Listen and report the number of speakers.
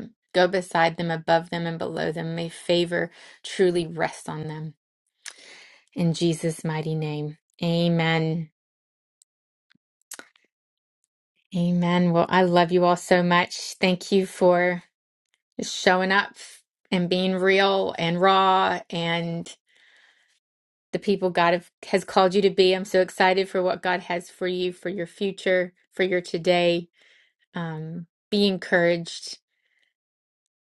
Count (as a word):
one